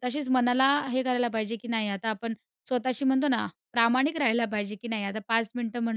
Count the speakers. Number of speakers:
1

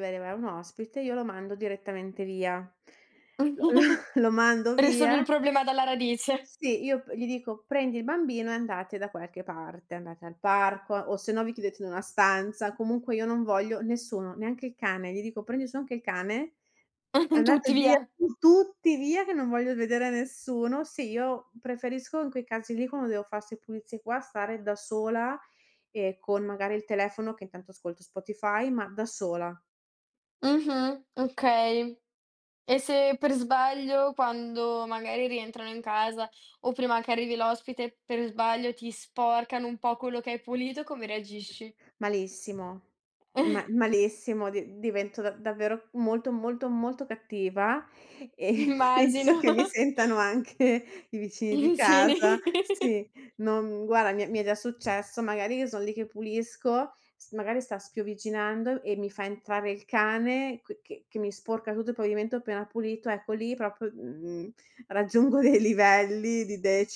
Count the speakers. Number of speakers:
2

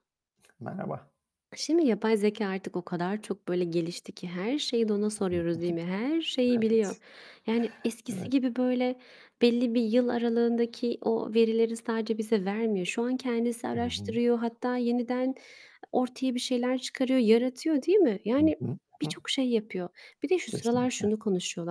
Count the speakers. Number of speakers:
2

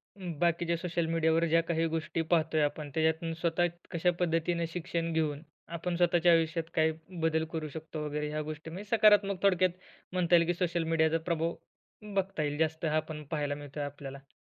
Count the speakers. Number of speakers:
1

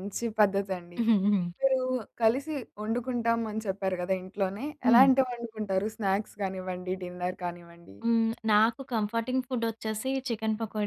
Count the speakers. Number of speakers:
2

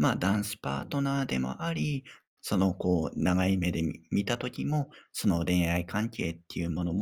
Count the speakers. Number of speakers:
1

